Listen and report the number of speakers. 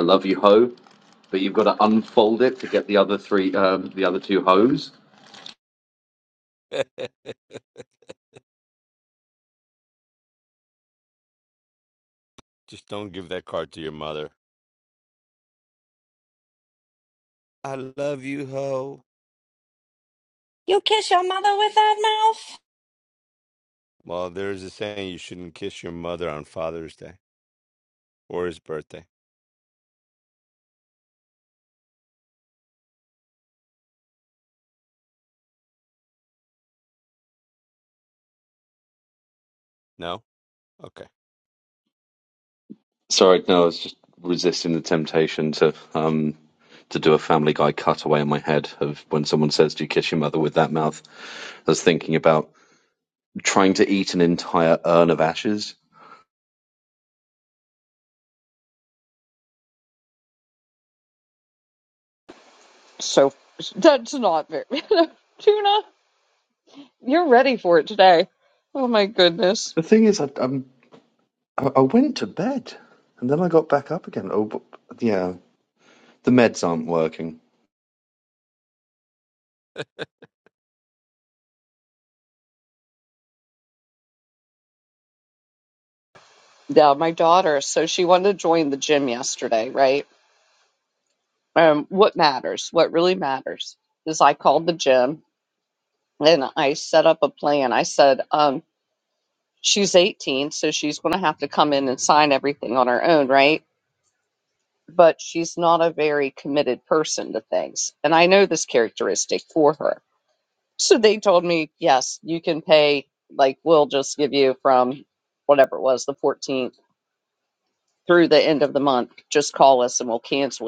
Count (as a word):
four